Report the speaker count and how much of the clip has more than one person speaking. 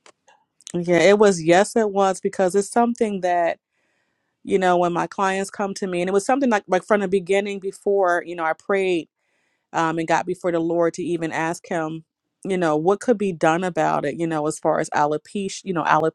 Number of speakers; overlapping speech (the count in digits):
1, no overlap